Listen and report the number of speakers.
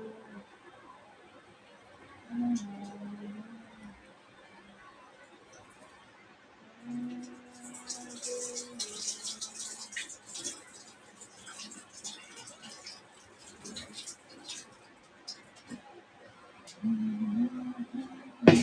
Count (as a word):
zero